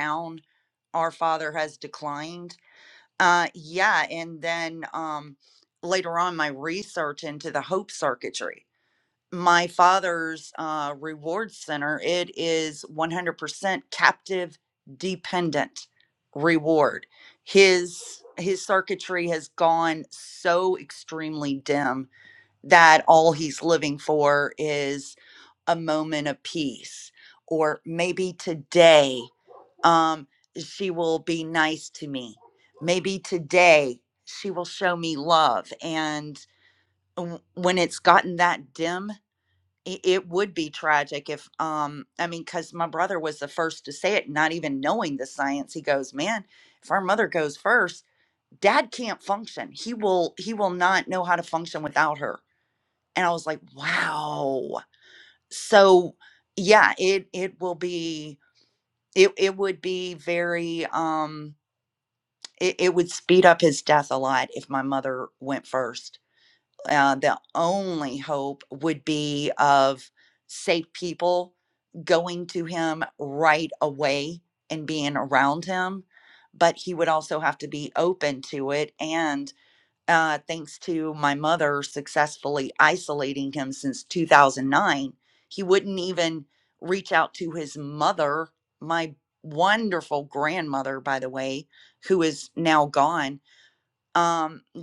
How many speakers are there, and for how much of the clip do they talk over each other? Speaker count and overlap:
one, no overlap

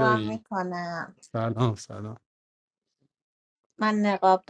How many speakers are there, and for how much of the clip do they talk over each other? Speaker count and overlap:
two, about 9%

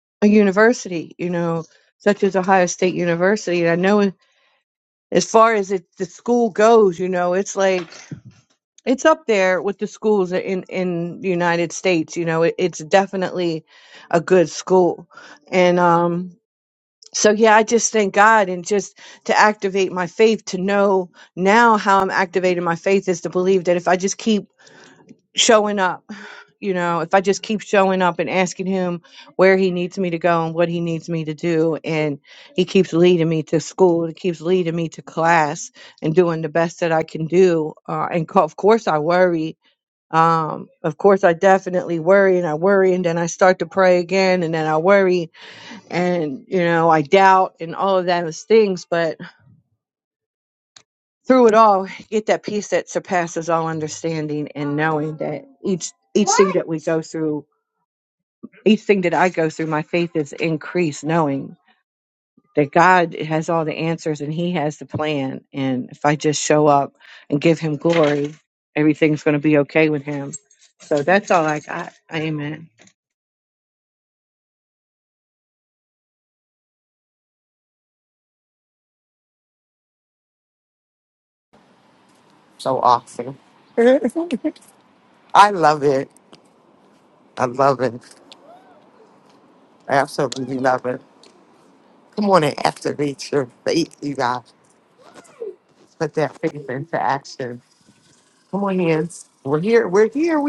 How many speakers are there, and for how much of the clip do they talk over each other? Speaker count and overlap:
two, no overlap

